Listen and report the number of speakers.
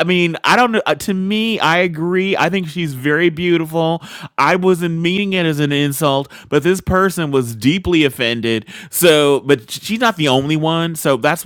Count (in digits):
1